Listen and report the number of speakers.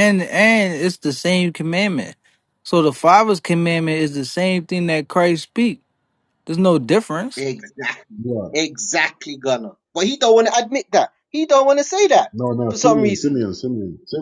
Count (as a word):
three